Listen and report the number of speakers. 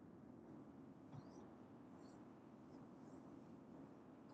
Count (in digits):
0